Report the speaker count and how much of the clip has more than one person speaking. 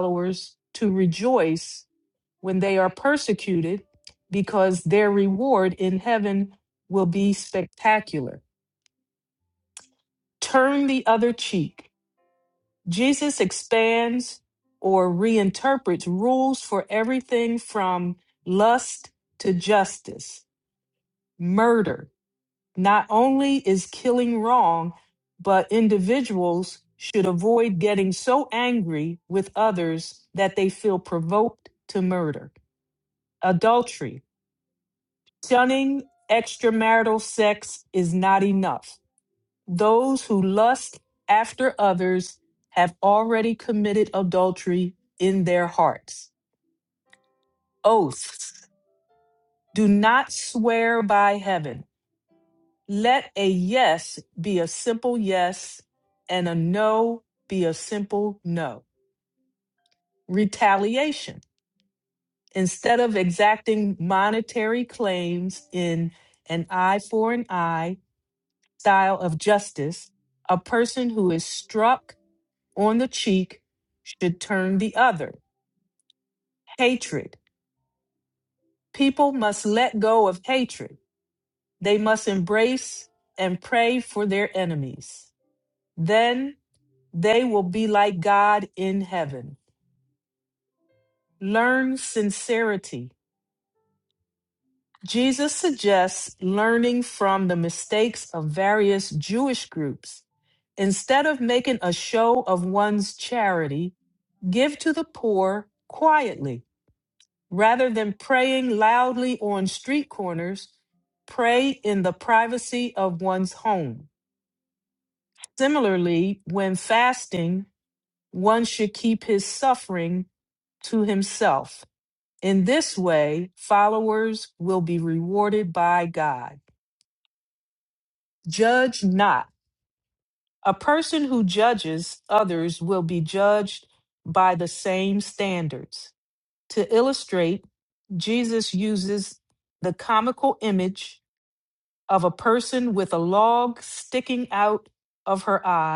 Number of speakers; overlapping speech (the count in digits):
1, no overlap